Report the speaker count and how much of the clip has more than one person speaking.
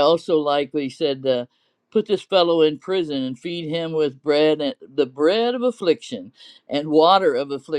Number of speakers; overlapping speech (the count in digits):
1, no overlap